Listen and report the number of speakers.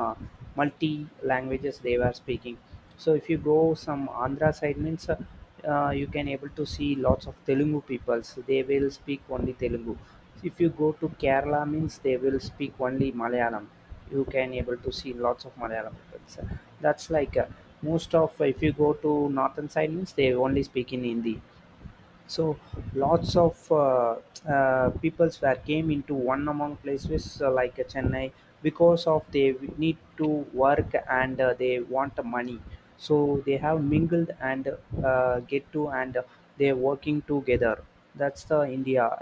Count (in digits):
1